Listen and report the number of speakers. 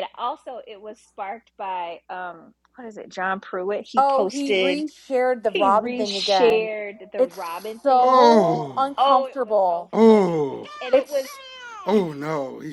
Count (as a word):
three